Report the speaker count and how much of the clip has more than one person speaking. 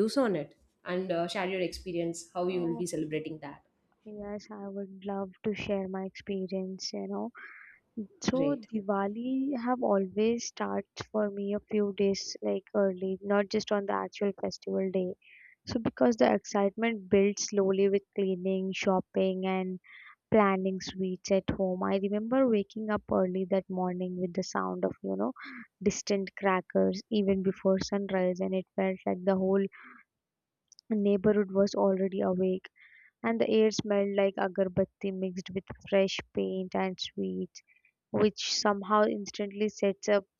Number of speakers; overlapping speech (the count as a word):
two, about 1%